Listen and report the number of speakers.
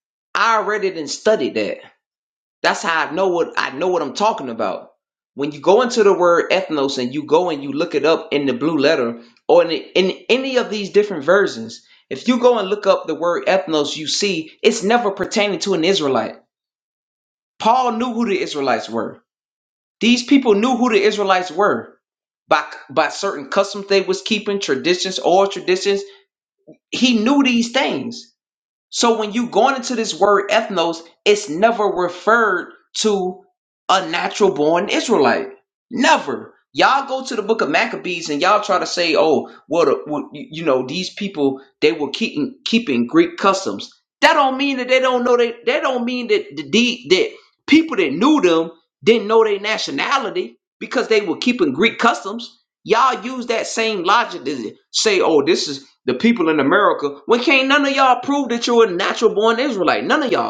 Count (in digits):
1